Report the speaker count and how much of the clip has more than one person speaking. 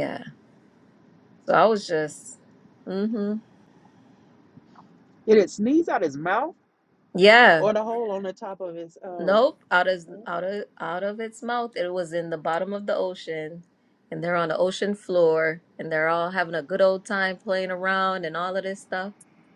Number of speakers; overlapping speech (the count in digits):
2, about 2%